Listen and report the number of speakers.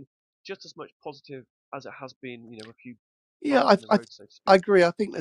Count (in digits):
2